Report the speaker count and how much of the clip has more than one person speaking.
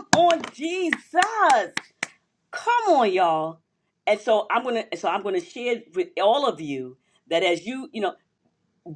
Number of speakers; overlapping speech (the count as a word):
one, no overlap